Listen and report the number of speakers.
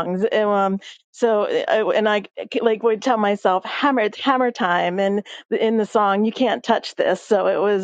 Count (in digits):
1